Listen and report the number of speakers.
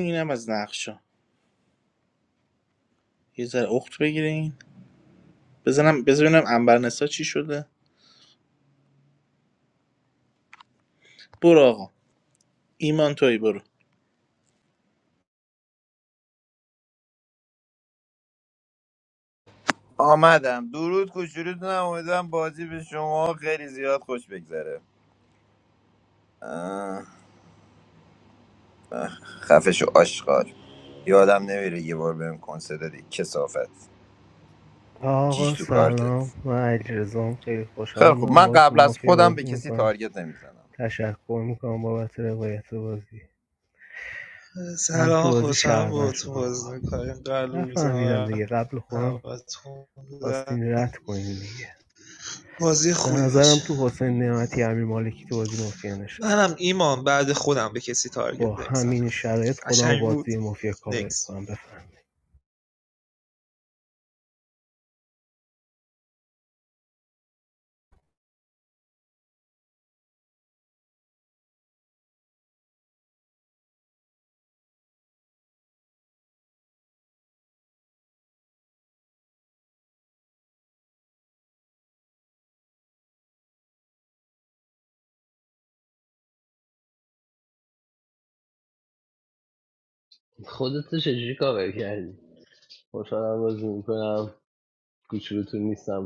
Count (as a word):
five